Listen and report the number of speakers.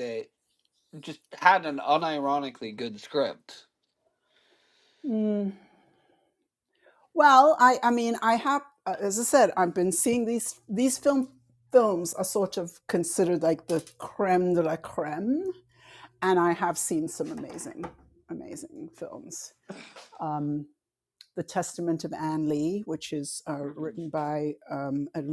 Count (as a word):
two